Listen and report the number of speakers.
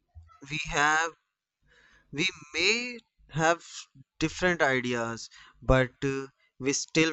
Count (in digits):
1